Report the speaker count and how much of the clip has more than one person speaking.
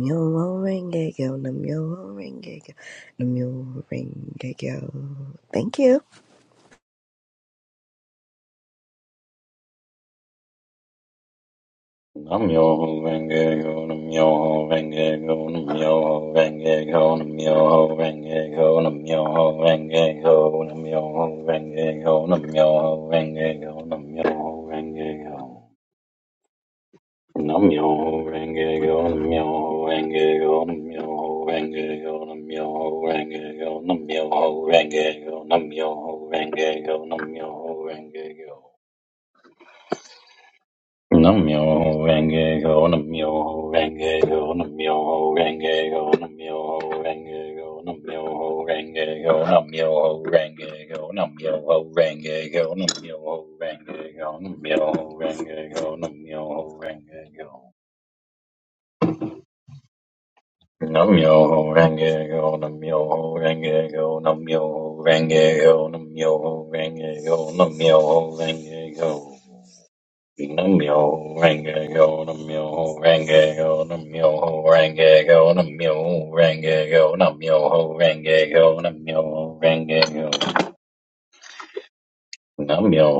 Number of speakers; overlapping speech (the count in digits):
2, no overlap